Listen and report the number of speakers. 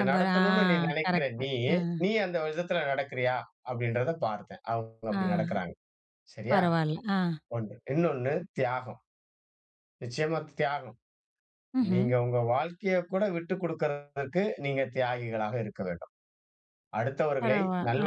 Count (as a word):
two